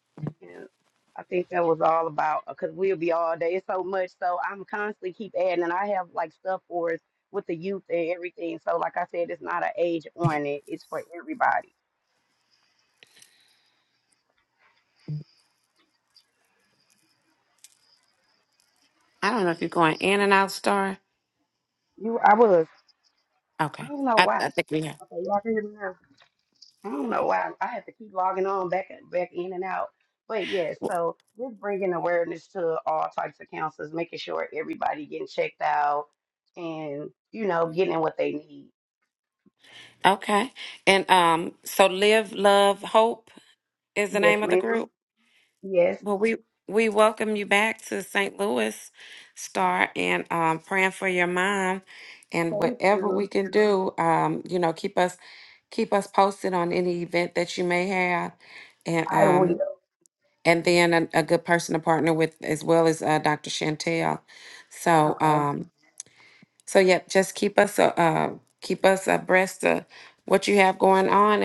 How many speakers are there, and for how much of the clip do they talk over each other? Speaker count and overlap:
2, about 4%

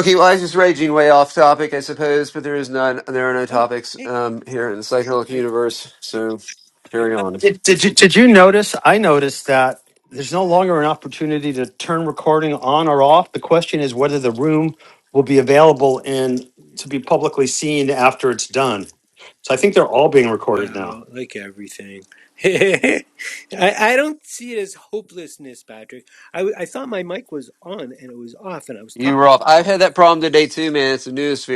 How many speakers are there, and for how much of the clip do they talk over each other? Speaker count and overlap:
3, about 6%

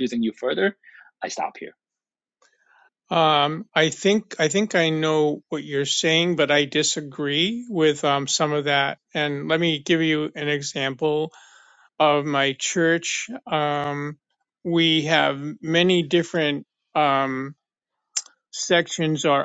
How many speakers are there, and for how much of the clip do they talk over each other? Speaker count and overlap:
2, no overlap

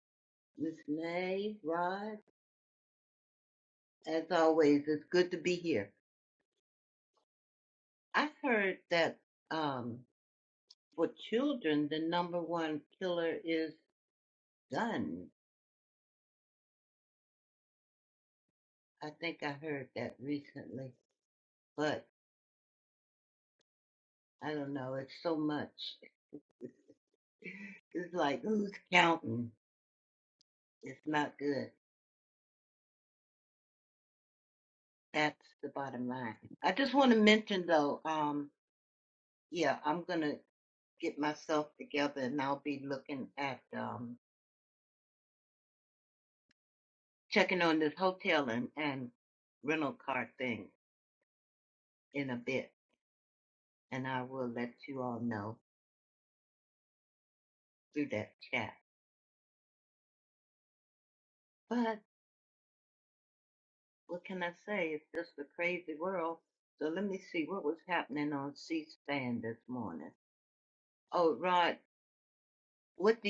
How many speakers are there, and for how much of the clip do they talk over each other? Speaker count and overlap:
1, no overlap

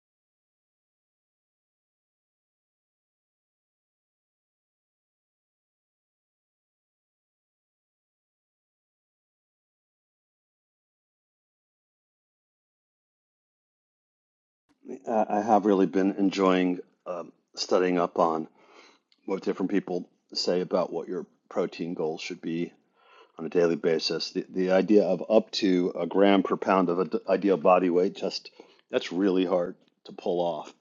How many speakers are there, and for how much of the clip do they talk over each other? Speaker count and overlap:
1, no overlap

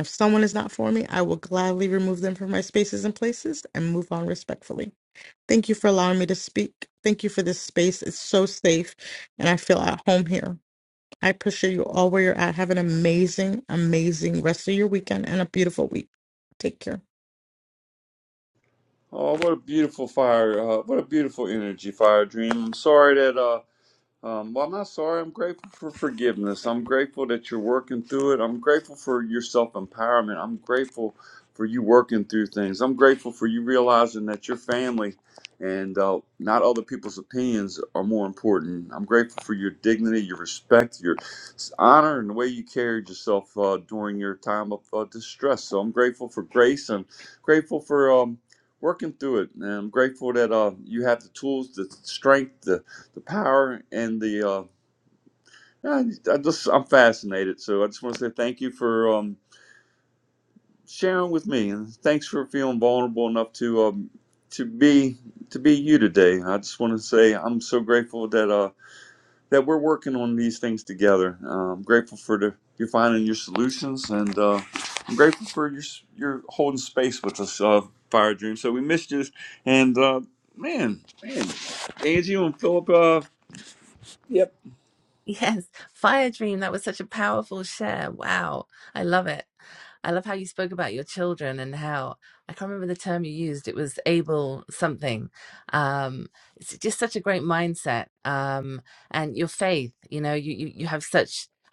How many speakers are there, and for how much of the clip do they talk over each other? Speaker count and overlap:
3, no overlap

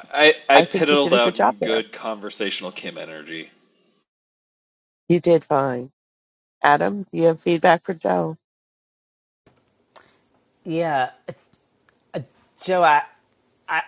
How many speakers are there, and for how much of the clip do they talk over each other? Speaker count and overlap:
3, about 9%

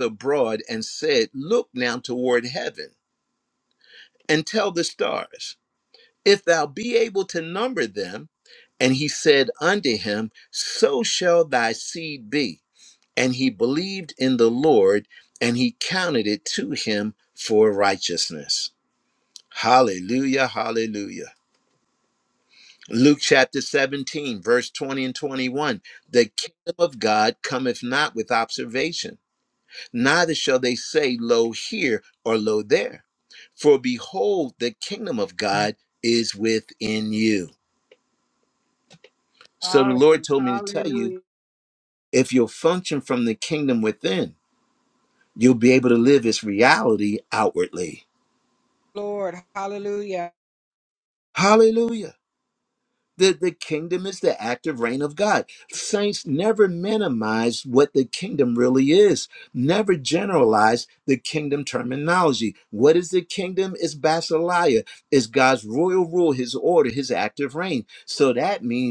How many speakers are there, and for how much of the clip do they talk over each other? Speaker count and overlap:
2, about 2%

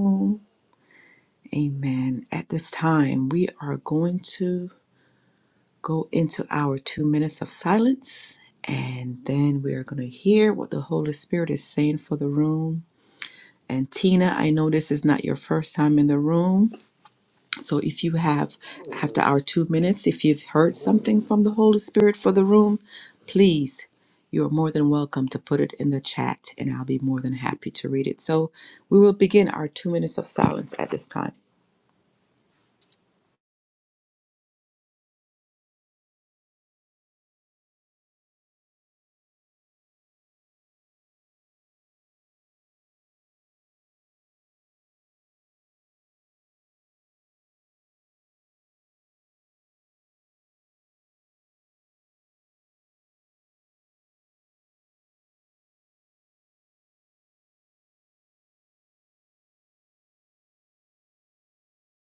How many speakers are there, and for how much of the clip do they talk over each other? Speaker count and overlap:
1, no overlap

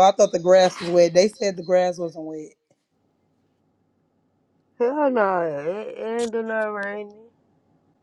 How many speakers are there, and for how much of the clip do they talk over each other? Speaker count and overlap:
2, no overlap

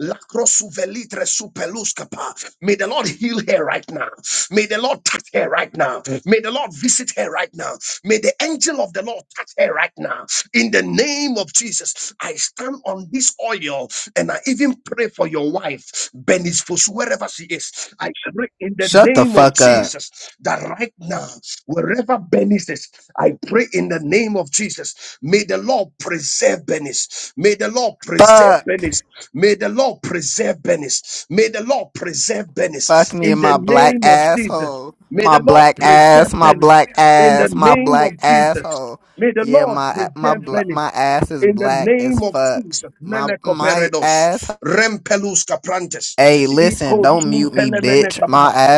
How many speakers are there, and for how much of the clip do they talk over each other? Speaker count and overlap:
2, about 25%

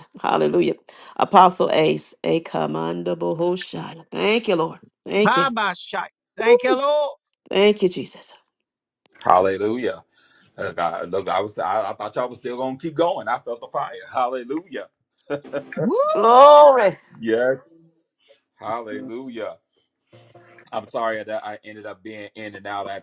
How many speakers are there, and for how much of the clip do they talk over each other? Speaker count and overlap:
3, about 3%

